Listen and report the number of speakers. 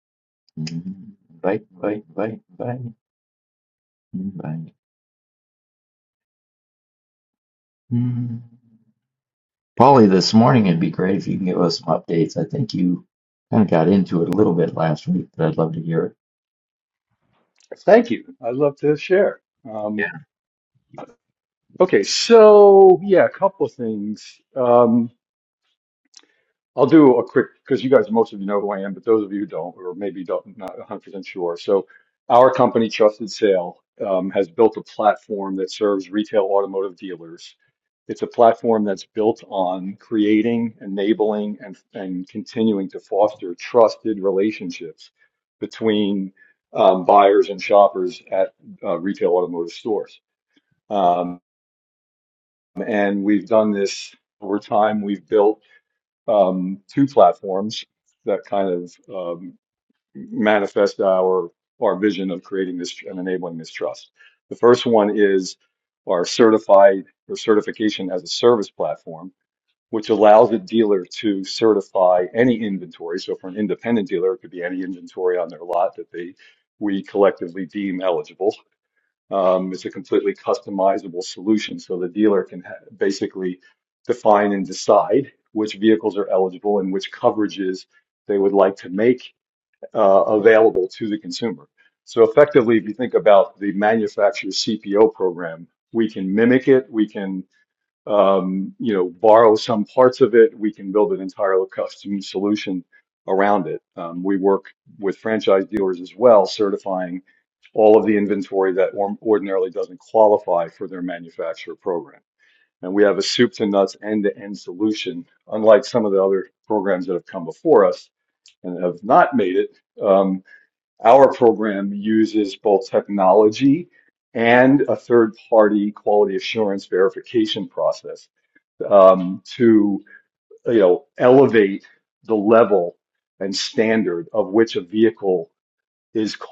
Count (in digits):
2